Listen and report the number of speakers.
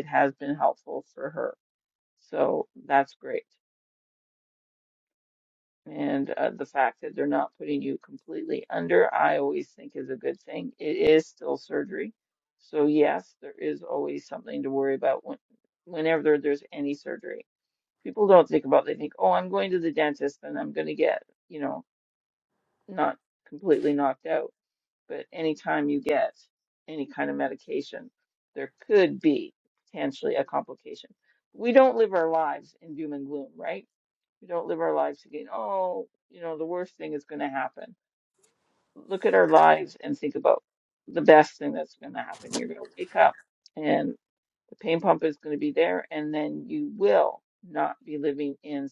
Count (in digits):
1